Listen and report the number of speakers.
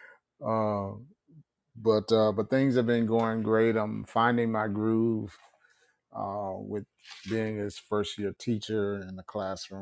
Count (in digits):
1